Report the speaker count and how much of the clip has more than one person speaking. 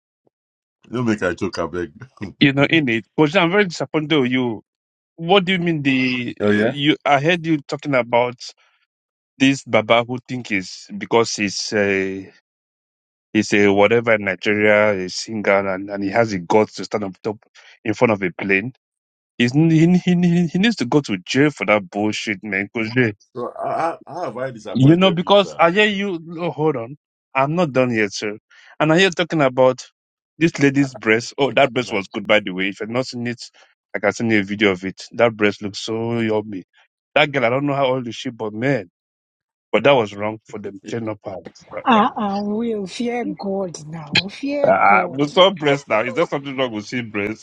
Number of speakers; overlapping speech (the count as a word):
three, about 4%